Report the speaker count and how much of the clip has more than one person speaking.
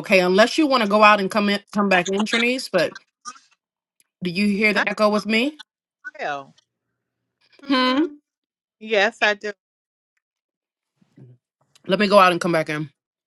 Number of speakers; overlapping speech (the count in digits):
2, about 4%